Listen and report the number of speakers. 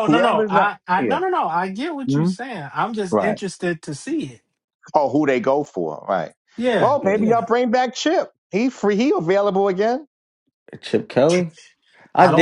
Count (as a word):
three